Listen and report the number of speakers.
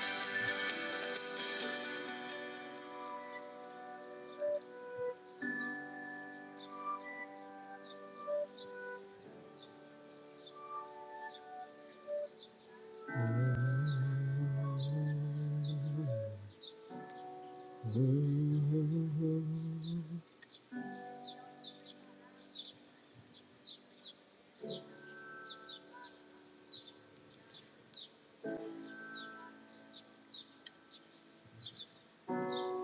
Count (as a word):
zero